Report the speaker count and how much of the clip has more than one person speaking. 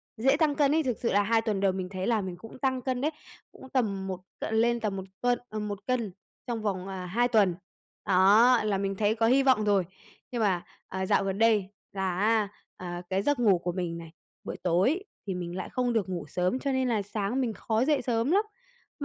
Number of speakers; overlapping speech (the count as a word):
one, no overlap